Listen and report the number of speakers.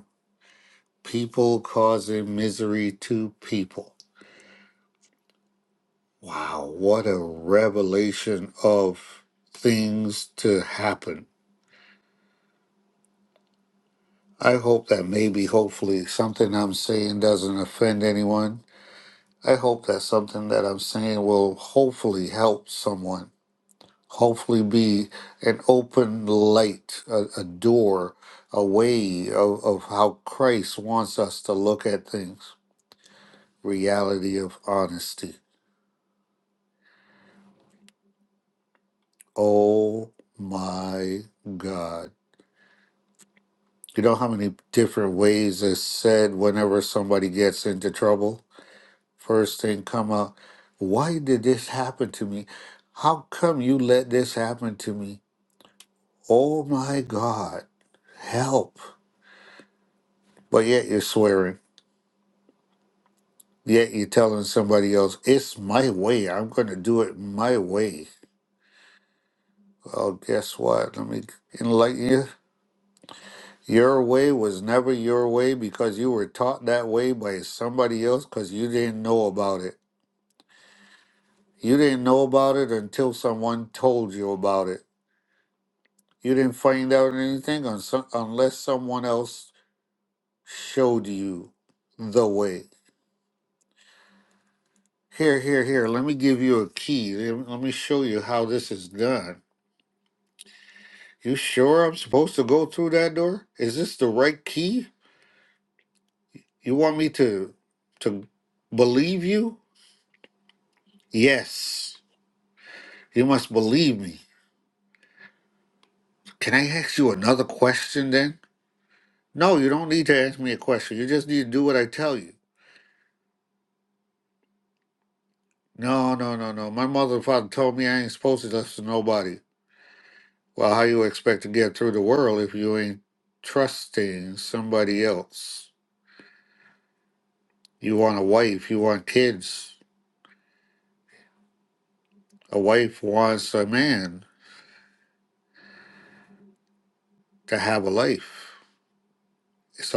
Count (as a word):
one